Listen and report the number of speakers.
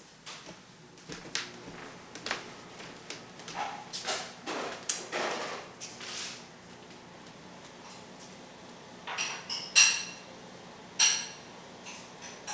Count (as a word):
zero